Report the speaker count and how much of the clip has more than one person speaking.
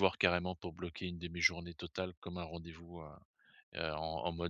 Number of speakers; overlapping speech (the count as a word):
one, no overlap